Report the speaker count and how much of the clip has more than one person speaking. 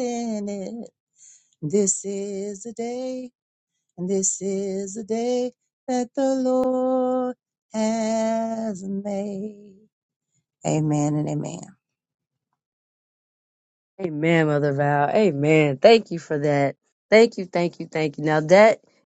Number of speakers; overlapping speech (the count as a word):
two, no overlap